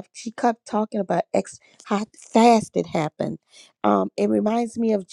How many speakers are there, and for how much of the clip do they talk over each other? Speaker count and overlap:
one, no overlap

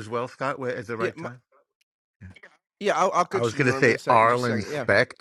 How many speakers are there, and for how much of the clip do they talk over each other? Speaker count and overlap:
two, about 35%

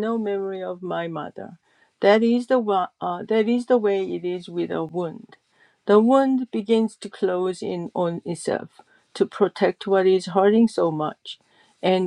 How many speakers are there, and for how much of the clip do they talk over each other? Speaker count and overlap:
one, no overlap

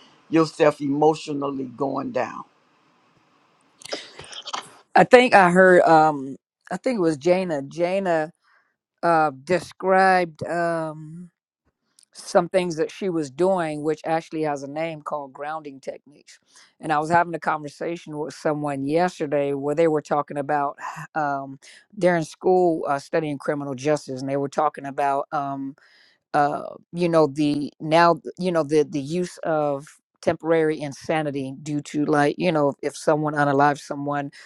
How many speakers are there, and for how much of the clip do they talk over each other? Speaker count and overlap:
two, no overlap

